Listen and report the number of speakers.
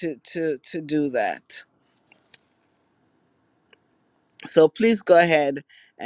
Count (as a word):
one